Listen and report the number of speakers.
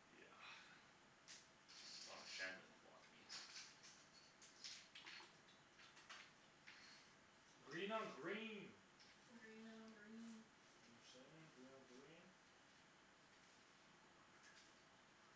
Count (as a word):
three